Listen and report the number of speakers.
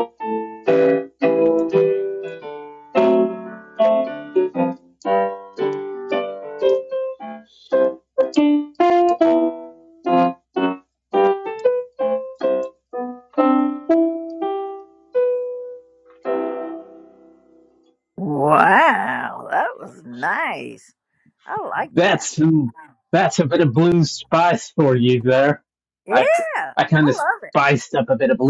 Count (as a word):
two